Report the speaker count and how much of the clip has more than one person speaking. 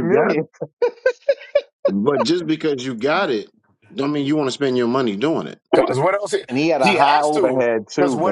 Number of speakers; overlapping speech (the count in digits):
3, about 21%